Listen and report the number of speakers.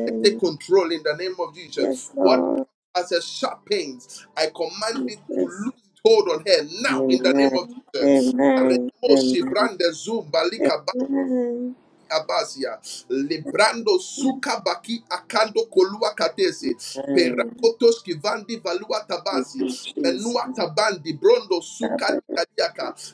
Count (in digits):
2